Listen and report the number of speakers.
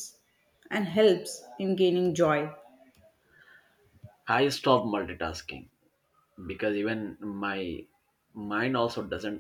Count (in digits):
2